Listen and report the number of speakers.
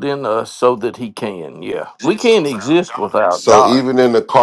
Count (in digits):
2